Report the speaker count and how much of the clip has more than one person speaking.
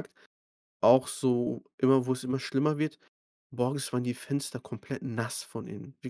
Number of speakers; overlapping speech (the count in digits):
1, no overlap